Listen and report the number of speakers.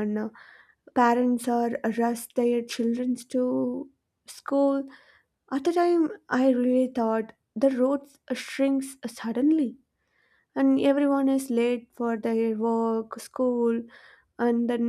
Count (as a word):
one